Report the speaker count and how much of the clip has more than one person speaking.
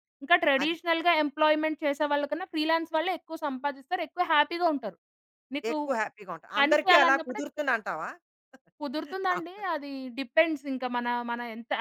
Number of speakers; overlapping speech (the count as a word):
two, about 12%